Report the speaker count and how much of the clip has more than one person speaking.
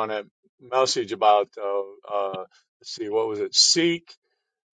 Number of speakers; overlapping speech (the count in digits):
1, no overlap